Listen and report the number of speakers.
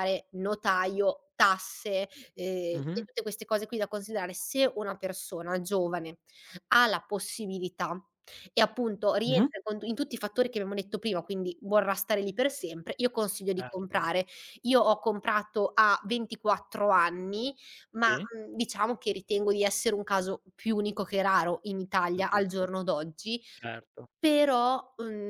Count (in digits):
2